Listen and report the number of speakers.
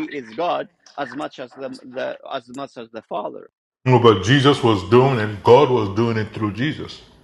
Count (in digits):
2